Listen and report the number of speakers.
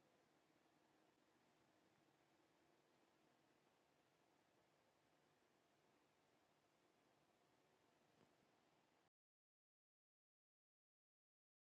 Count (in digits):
0